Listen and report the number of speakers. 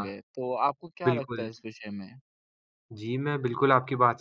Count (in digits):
2